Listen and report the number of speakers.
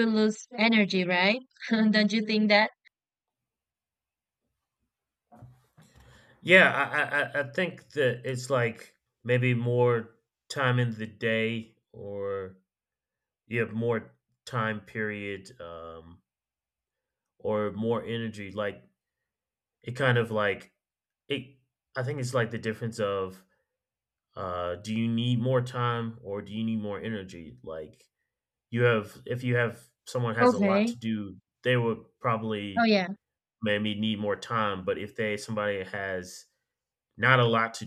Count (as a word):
two